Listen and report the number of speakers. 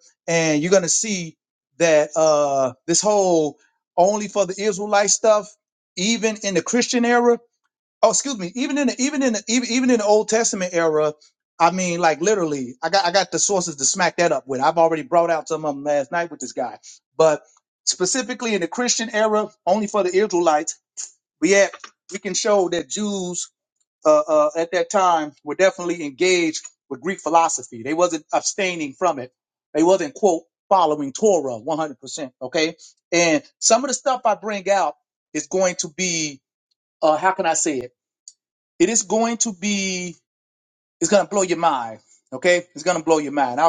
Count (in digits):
1